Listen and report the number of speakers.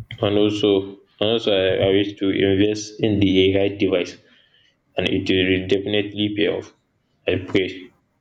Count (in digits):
1